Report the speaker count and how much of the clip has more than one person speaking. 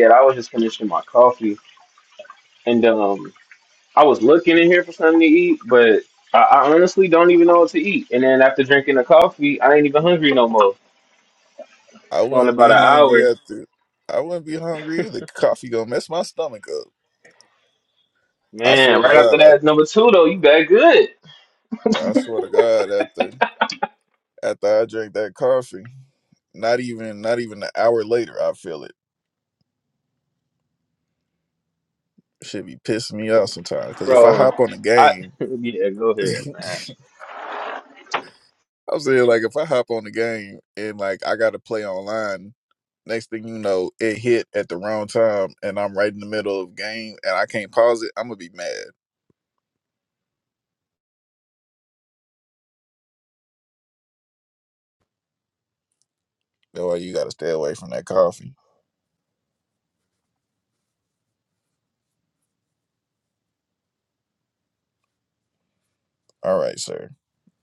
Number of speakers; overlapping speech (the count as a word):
two, about 4%